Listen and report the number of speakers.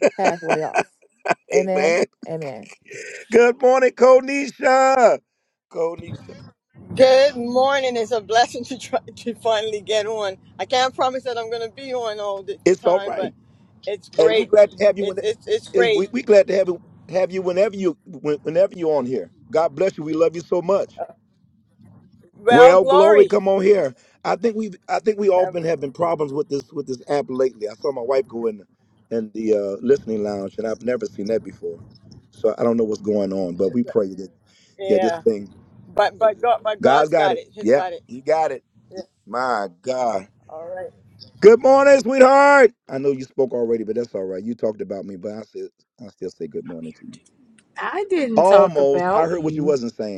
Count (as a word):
four